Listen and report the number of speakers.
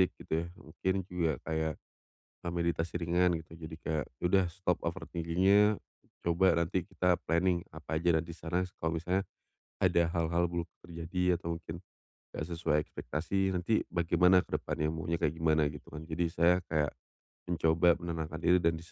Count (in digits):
1